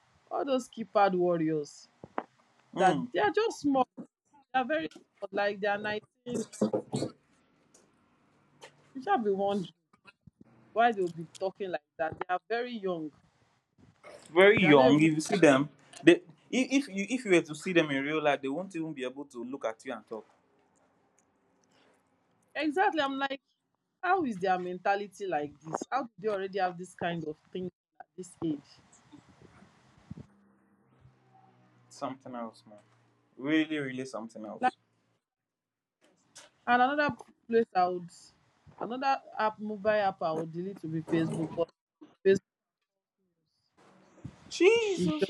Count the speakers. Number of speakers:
two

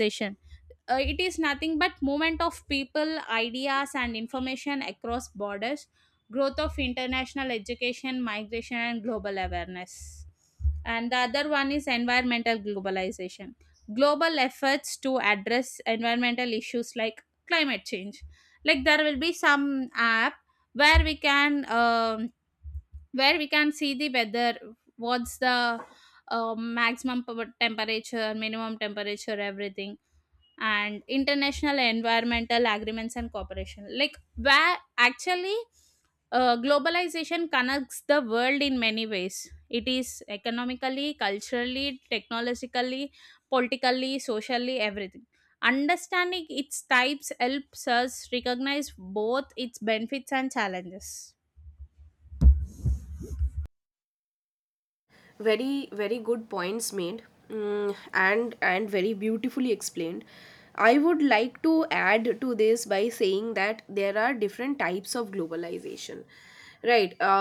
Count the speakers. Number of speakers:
two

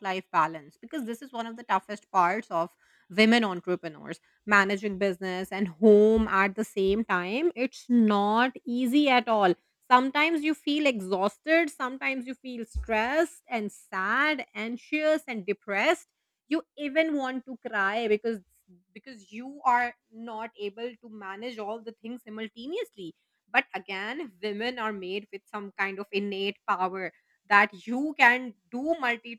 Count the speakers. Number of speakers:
one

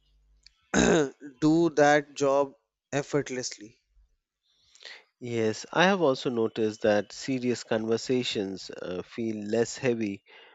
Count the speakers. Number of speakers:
two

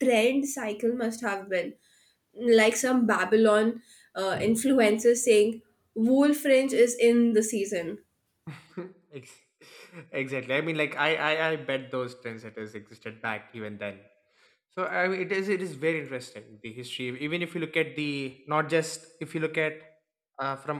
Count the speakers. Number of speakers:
two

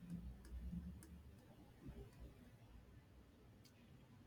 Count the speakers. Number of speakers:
zero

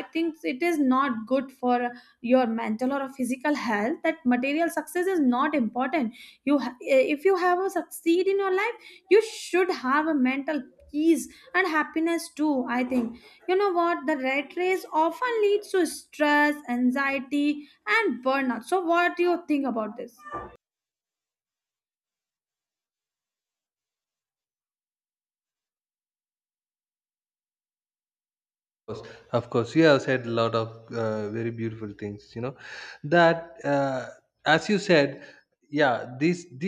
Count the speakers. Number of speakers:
two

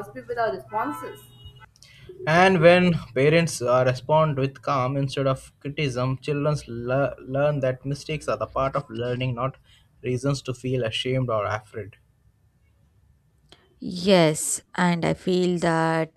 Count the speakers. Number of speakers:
three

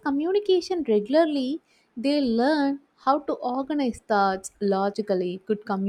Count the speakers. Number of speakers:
one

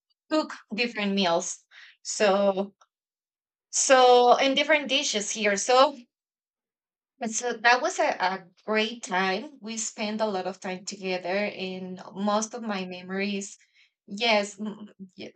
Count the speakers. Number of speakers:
one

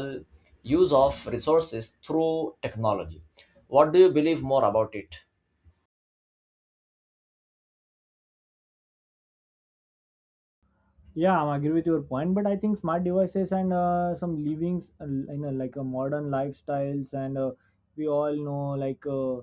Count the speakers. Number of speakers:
two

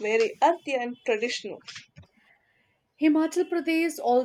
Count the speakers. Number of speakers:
two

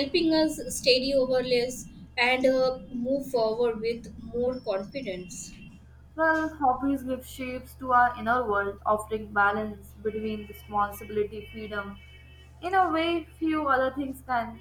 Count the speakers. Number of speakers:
two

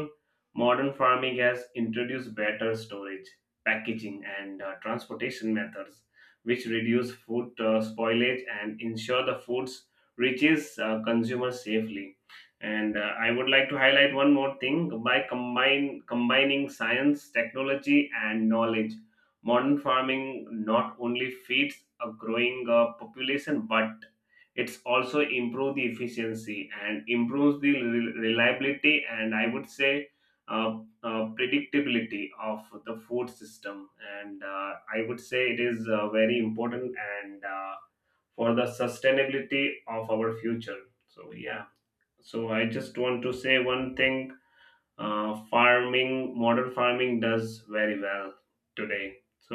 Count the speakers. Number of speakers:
one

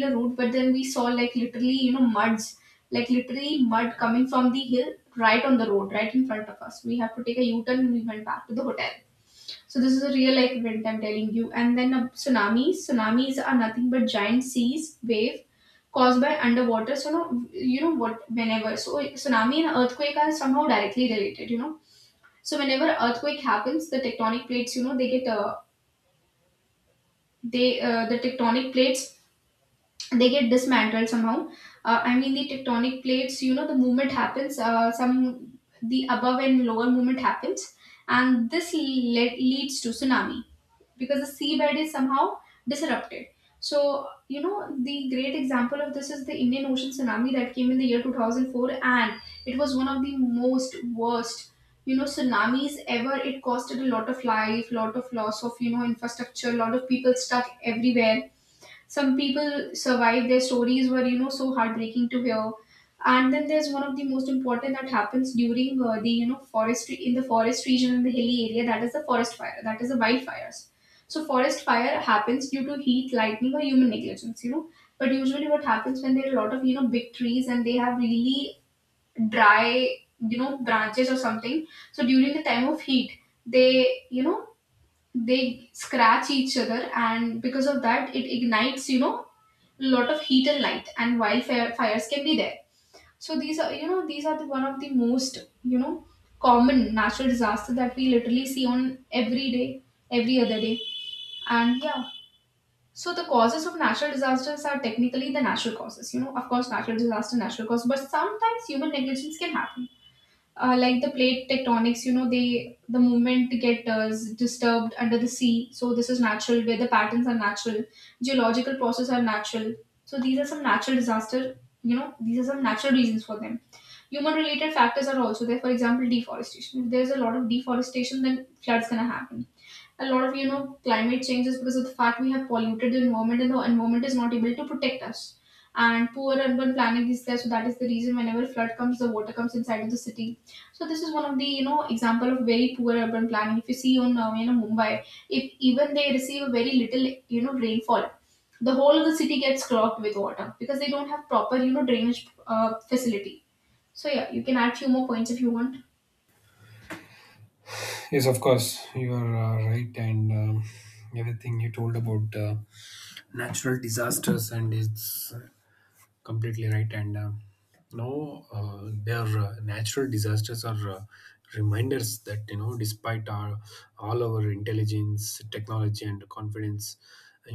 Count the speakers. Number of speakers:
two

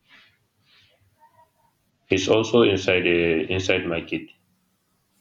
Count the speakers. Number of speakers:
one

